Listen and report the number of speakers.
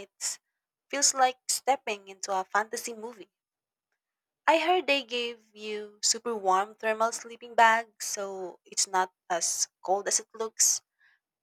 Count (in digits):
1